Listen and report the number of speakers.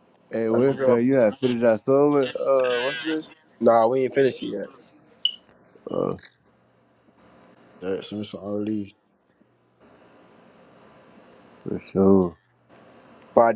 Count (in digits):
3